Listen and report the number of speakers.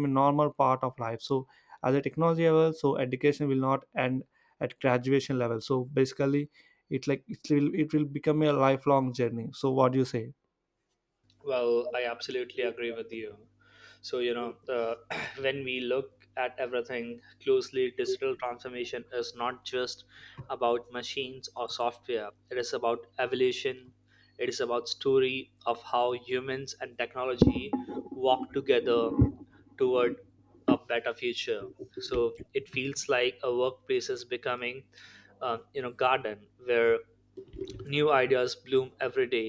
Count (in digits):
2